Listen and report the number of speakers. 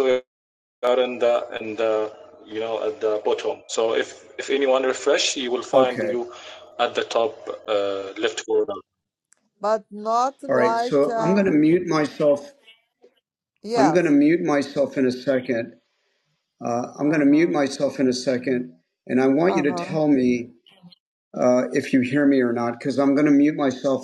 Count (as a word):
three